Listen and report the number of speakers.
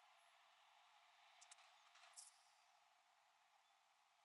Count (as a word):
zero